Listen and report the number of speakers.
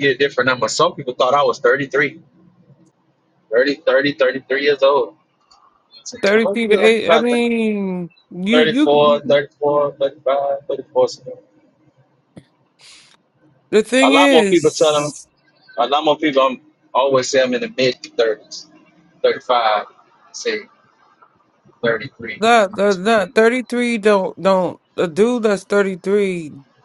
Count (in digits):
2